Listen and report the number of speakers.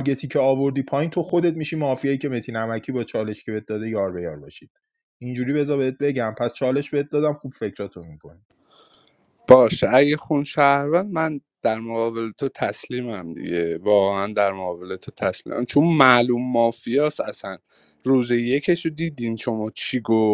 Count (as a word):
two